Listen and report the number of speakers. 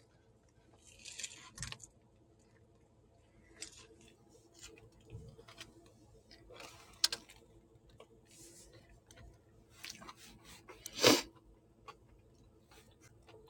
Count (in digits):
0